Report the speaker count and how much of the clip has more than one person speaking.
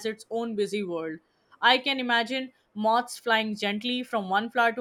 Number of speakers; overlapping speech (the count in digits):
1, no overlap